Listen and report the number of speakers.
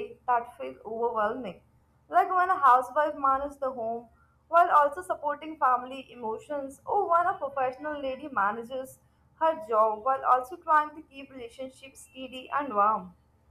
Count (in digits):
1